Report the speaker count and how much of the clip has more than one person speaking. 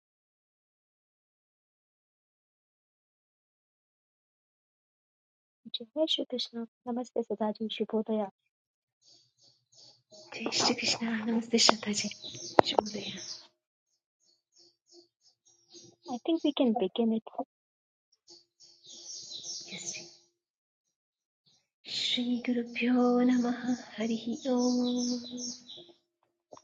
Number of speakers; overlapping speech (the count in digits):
2, no overlap